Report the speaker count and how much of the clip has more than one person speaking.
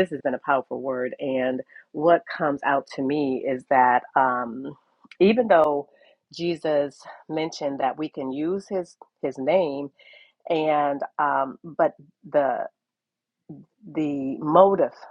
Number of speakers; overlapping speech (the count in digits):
1, no overlap